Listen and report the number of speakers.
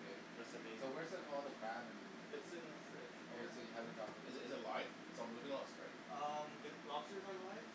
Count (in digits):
3